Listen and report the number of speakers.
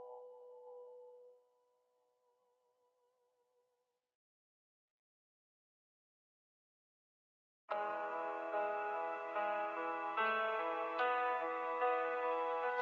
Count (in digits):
0